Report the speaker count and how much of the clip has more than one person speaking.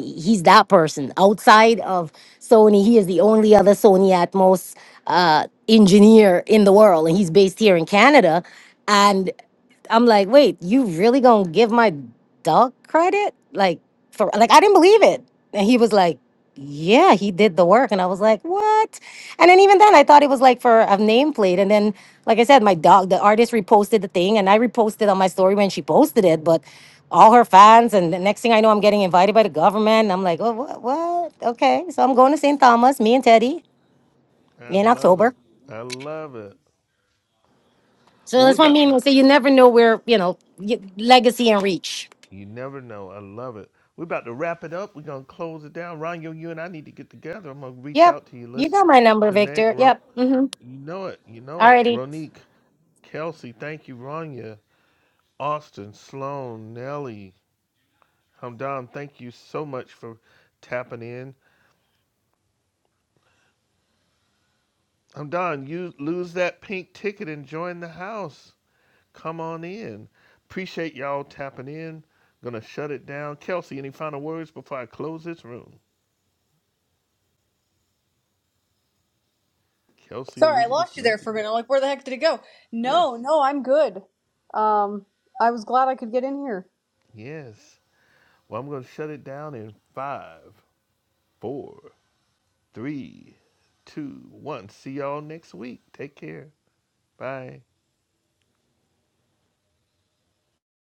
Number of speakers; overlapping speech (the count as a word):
three, about 4%